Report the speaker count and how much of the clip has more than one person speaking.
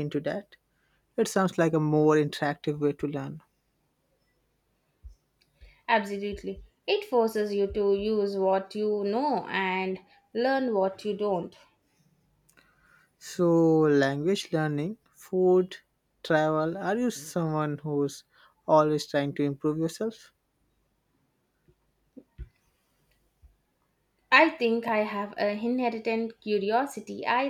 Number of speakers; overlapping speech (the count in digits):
2, no overlap